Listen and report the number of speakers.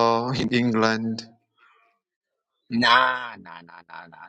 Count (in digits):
2